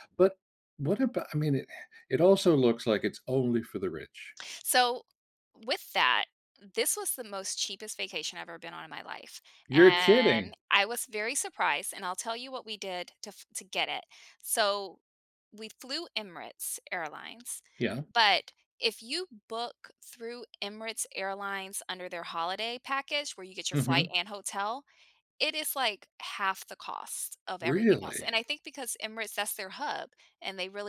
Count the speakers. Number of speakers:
2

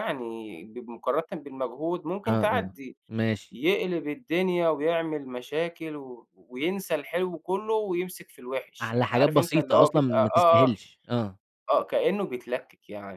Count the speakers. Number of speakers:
2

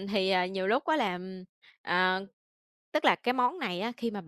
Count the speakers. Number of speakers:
1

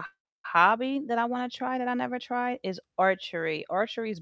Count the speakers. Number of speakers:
1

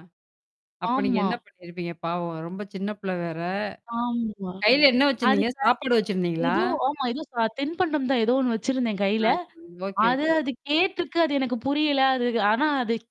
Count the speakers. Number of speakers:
2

